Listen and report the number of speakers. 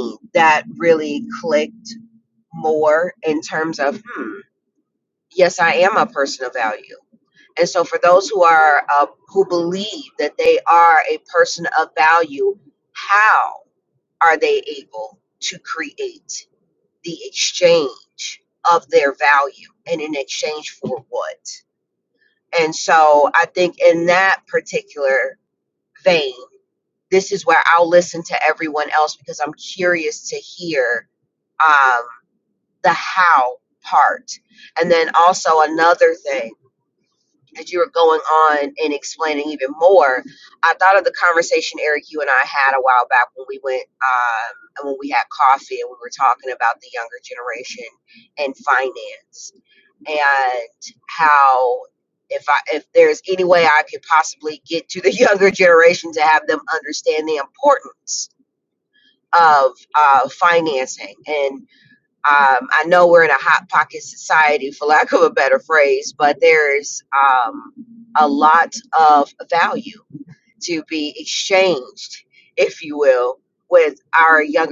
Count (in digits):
1